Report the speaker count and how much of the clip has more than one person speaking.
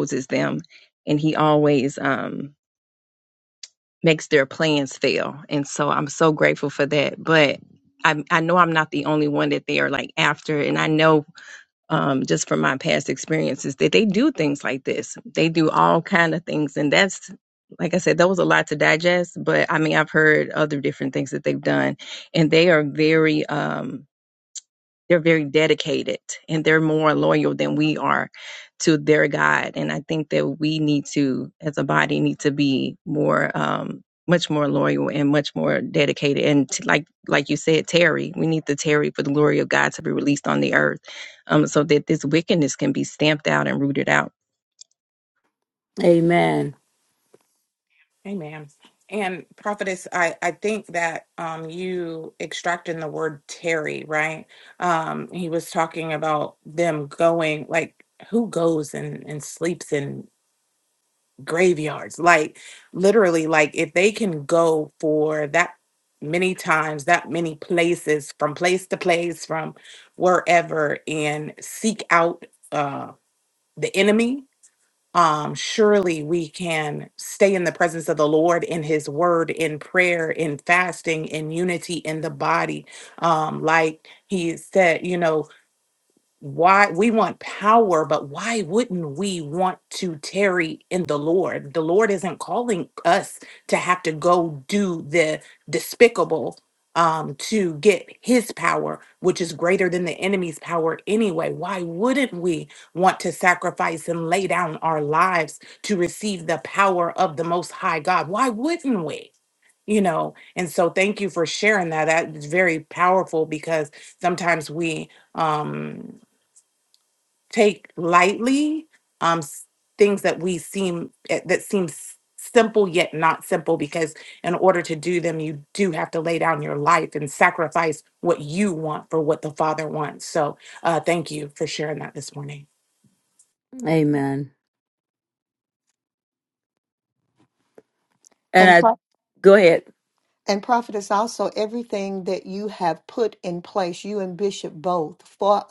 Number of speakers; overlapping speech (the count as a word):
four, under 1%